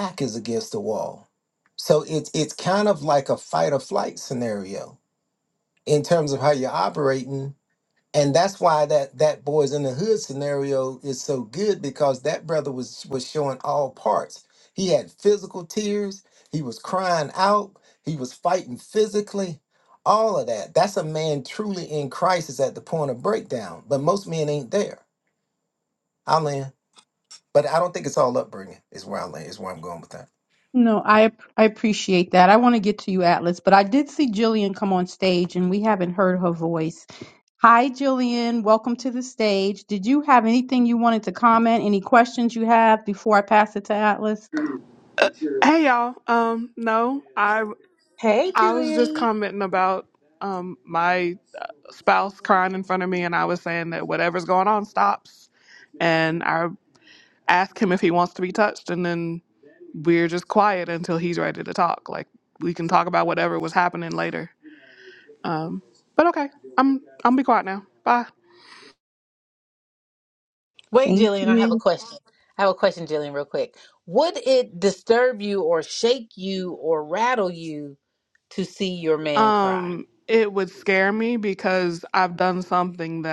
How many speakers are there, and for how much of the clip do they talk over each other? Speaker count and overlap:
4, about 2%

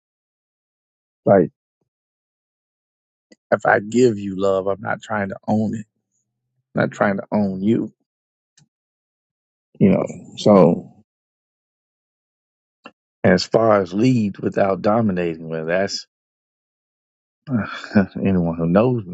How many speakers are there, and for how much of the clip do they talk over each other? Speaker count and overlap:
1, no overlap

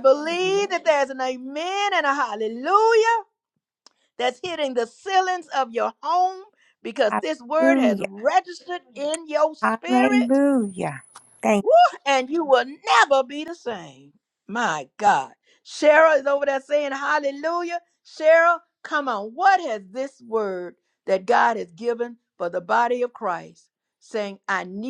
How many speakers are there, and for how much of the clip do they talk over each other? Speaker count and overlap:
2, about 4%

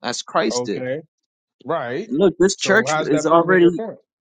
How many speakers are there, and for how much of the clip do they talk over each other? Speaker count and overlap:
2, about 36%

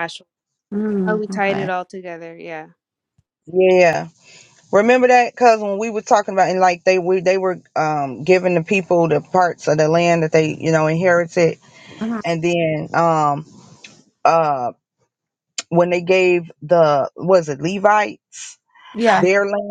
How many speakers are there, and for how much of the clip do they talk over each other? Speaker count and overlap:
3, about 4%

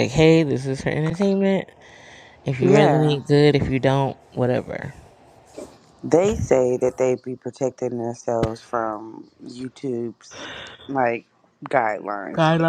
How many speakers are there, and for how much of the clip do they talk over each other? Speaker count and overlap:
2, about 8%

